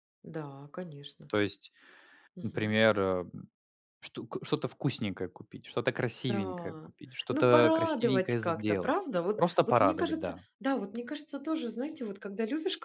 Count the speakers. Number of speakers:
2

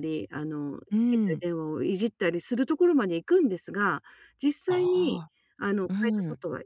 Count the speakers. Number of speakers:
2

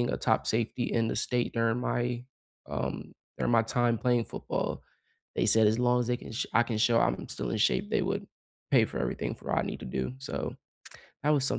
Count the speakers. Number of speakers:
1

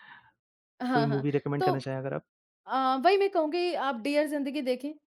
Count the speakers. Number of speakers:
2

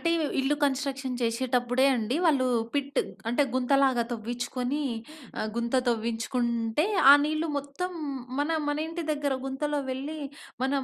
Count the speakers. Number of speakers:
1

